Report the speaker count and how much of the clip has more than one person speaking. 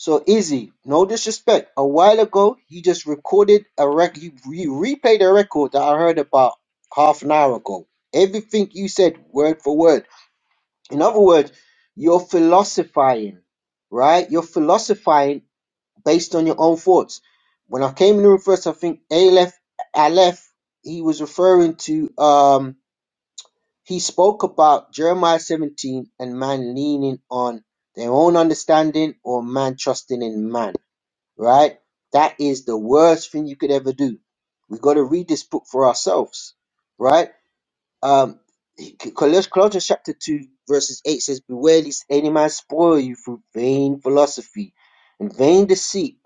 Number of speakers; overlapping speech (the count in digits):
1, no overlap